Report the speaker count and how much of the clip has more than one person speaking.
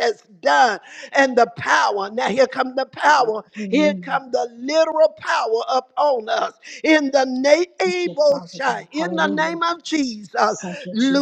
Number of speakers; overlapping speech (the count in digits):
2, about 14%